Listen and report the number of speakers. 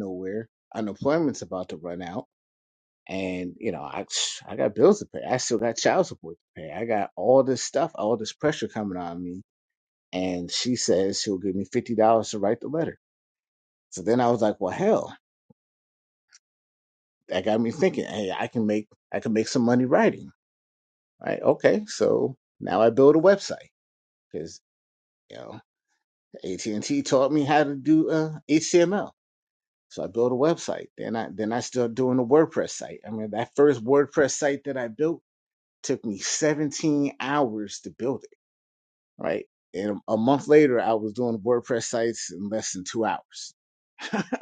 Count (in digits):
1